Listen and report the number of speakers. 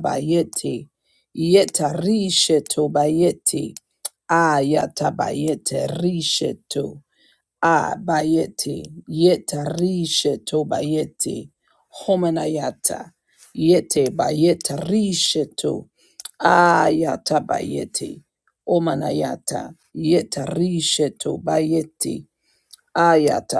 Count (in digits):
1